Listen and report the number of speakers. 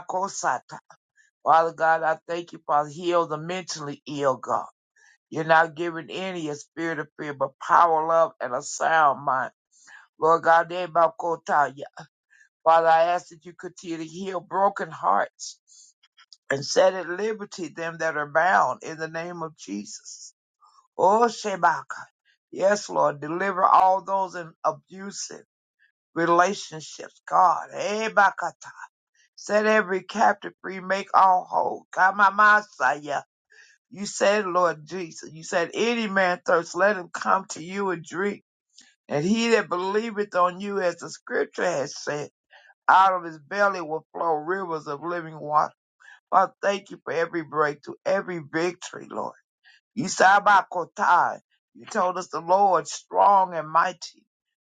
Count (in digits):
1